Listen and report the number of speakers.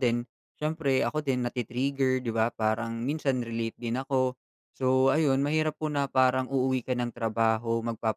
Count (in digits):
1